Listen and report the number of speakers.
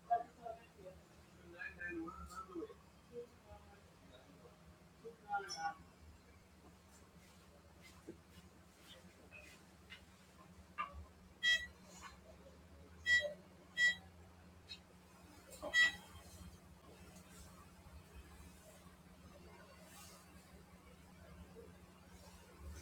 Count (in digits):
0